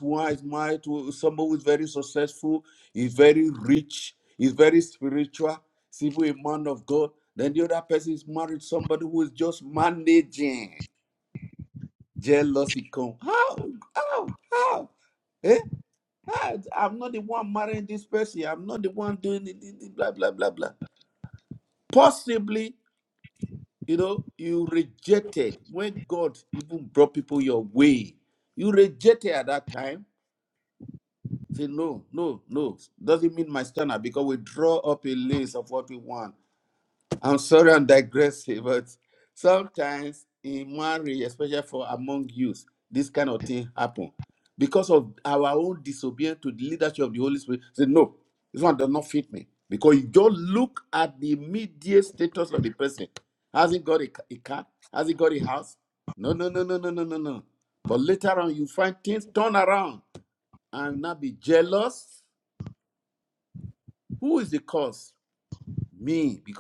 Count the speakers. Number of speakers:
1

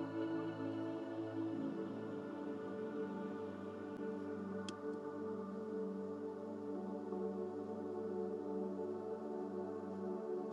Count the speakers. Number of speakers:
0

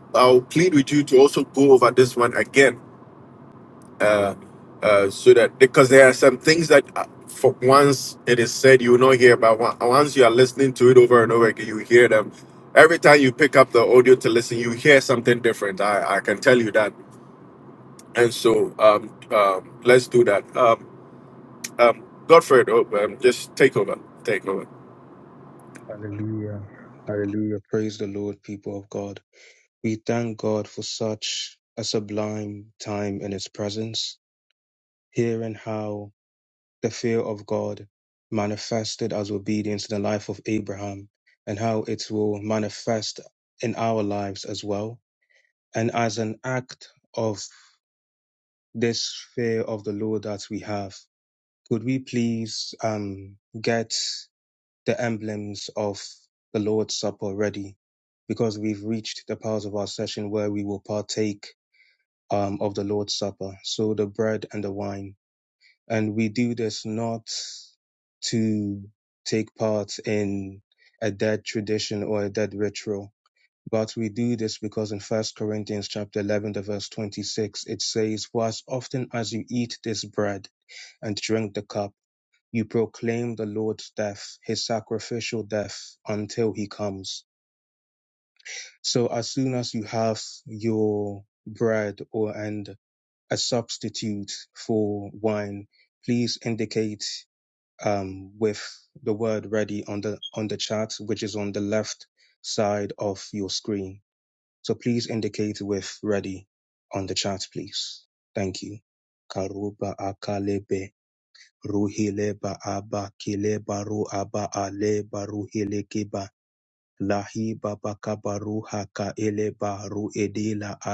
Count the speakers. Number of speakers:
2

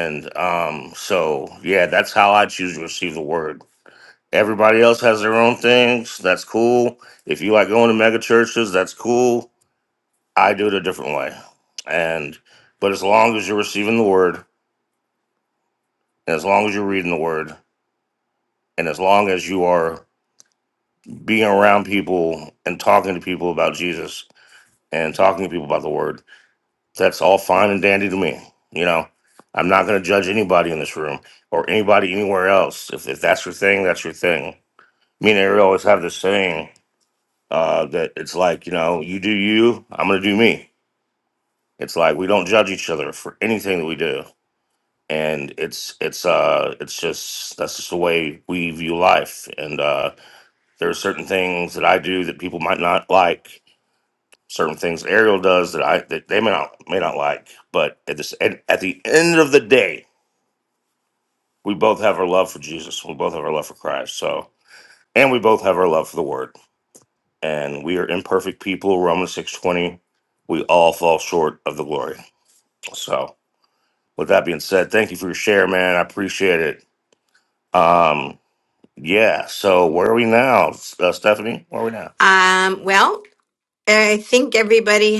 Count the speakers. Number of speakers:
2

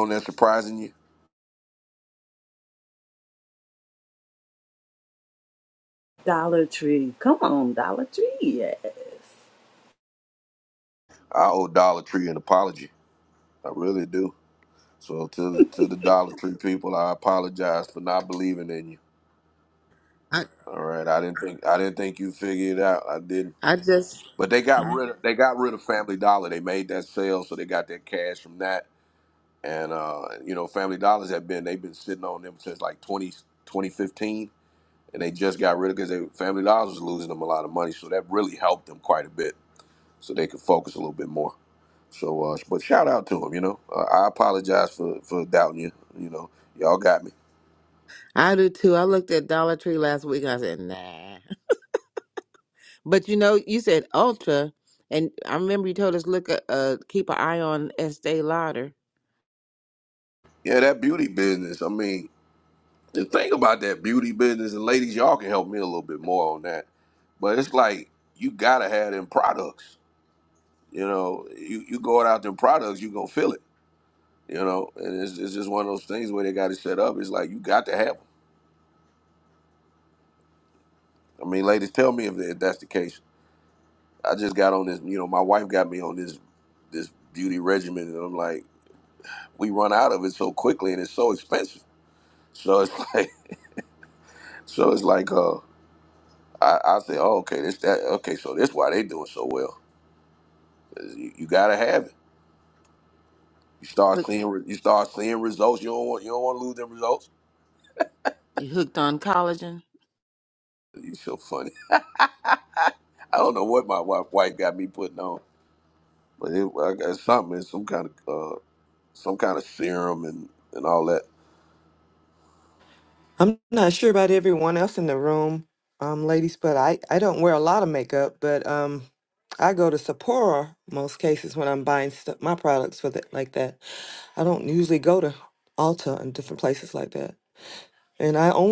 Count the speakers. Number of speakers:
4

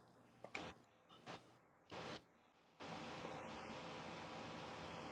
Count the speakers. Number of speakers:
0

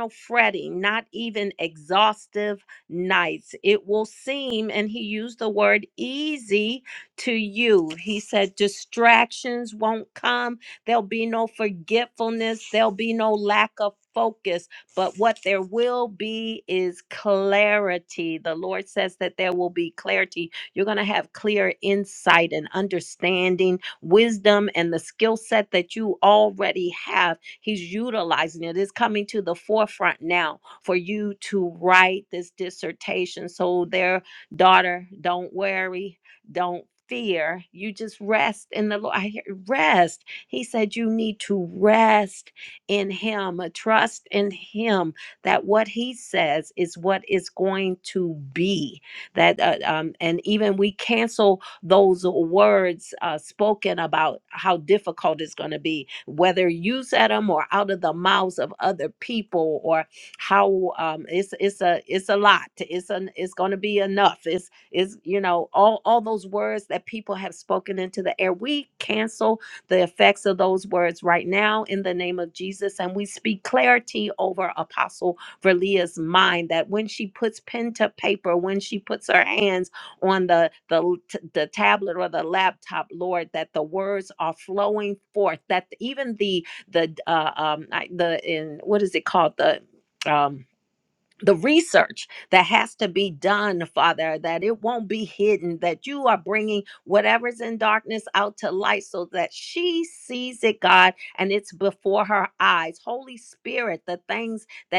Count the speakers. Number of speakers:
1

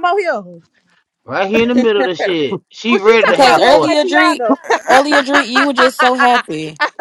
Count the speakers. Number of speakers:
3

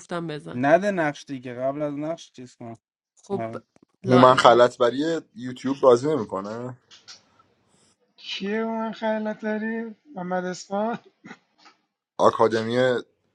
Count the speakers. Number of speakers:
4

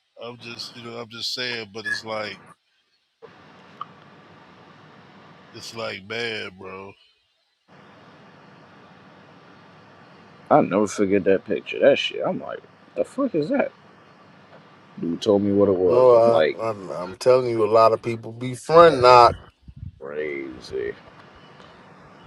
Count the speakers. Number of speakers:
3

